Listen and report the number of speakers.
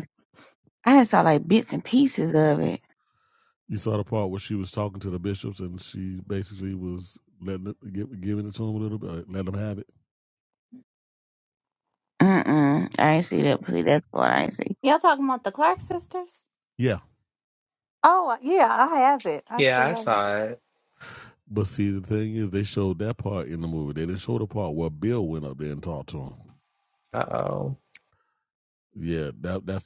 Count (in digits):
4